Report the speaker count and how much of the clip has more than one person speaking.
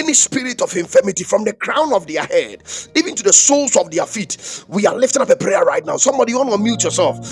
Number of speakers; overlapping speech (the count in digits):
1, no overlap